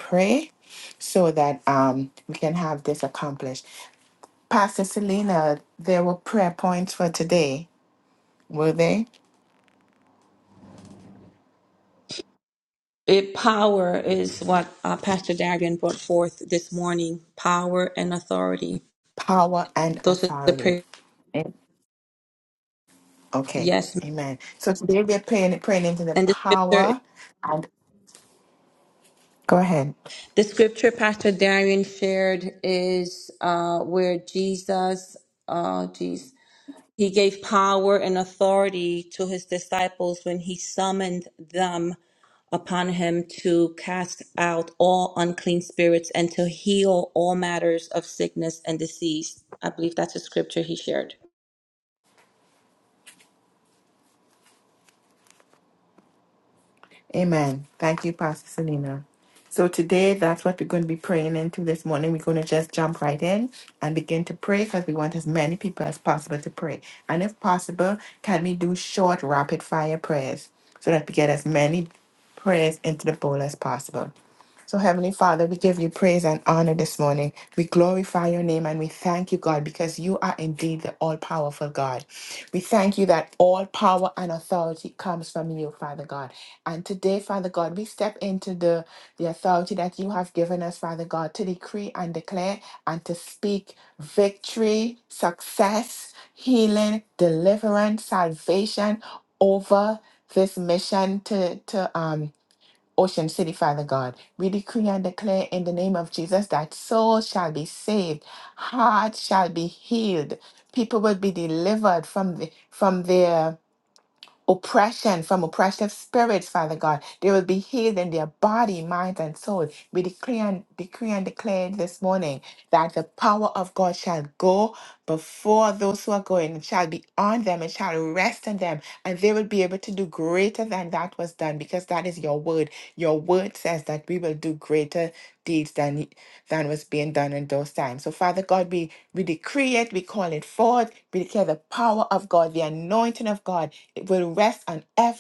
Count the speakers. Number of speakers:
2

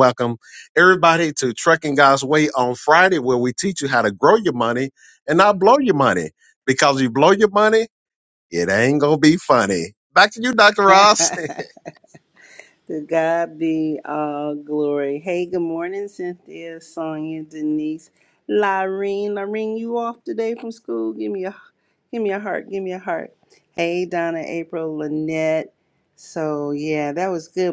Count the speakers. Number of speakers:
2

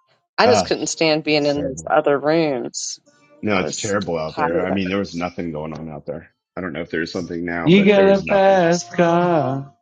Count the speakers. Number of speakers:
3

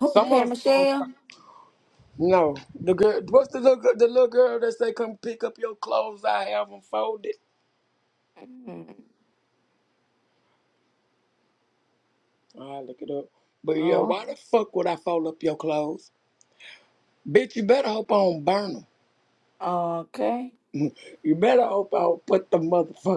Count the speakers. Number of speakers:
2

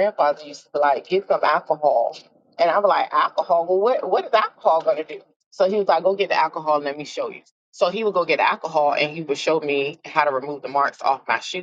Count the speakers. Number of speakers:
1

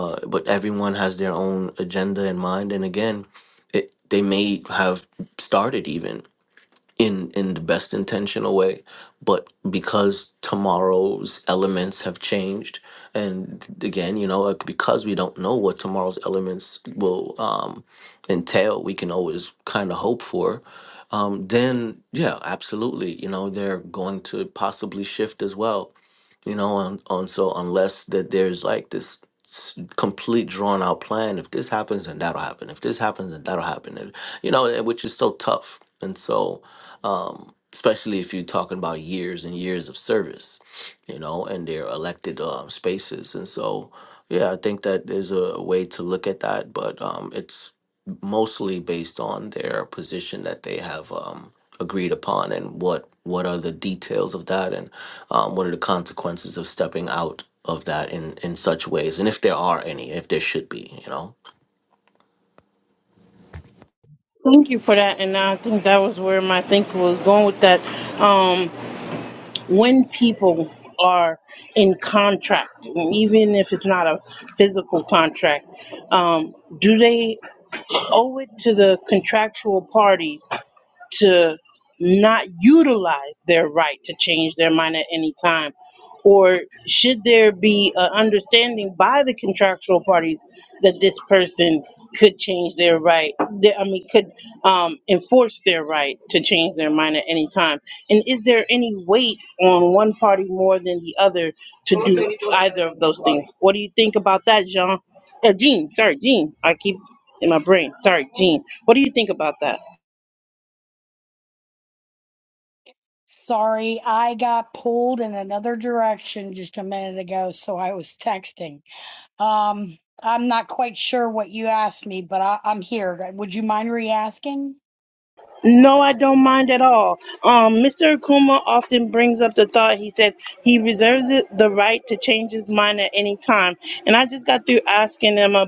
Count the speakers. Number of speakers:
3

